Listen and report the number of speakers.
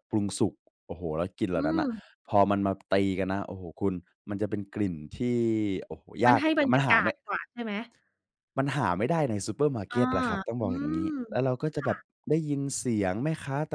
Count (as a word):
two